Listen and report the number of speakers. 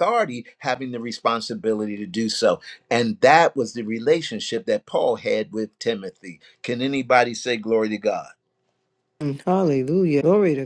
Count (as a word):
two